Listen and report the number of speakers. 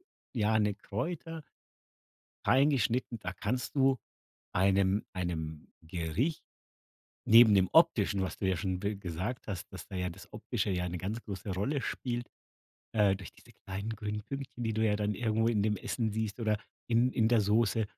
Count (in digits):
1